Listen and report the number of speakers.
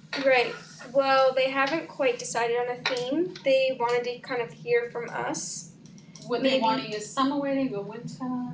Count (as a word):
two